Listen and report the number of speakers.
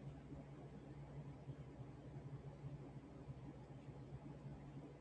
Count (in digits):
0